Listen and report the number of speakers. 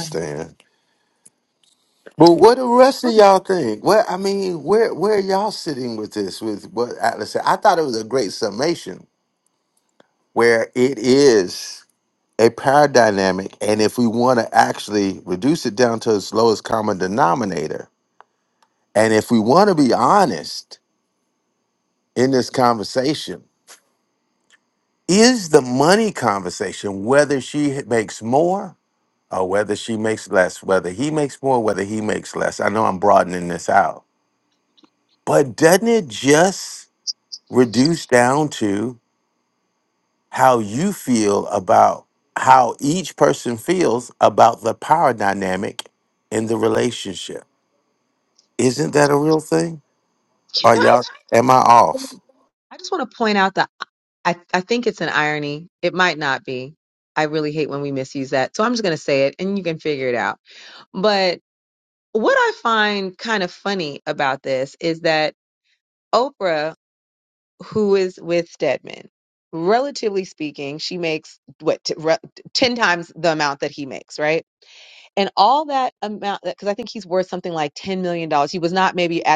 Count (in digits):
2